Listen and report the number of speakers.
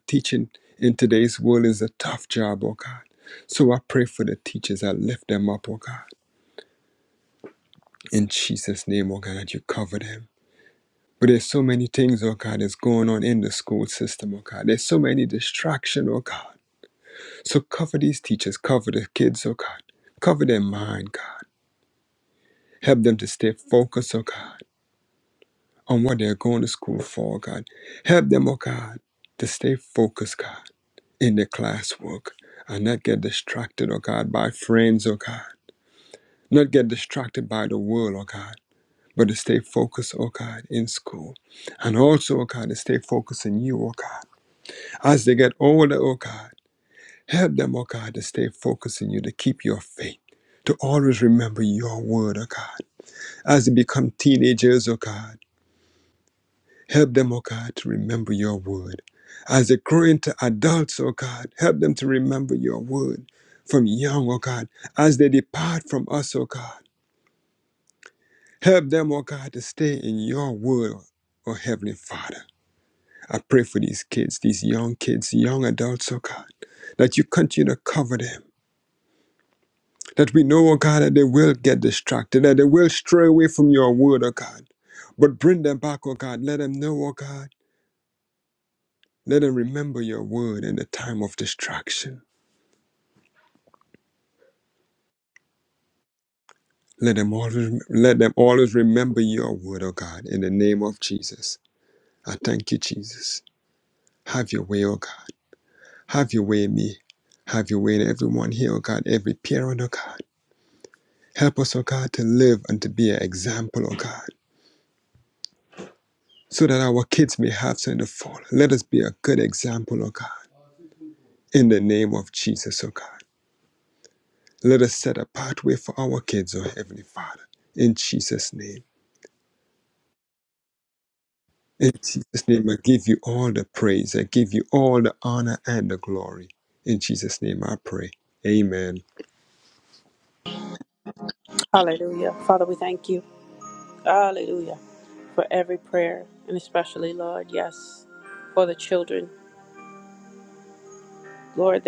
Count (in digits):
2